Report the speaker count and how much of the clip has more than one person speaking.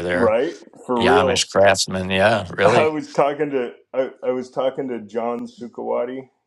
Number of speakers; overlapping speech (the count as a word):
two, about 14%